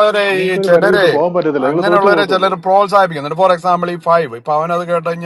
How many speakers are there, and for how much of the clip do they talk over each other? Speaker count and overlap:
2, about 32%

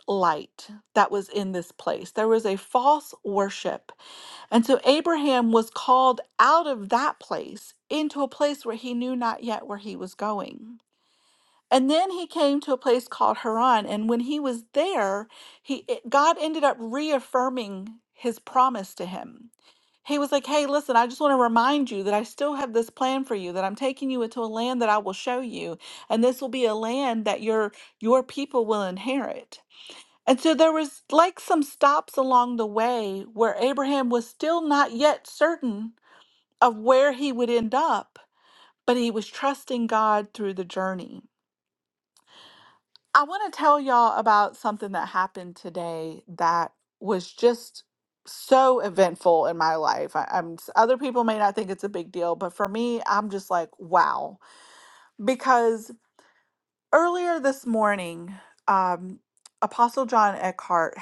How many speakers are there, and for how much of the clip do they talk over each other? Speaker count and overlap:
1, no overlap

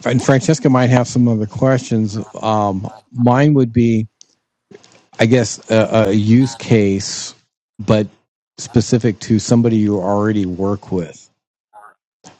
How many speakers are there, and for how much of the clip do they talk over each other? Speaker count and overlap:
1, no overlap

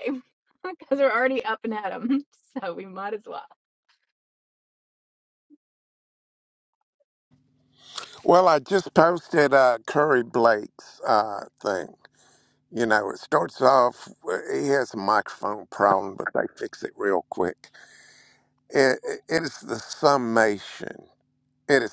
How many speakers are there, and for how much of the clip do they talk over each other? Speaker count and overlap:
2, no overlap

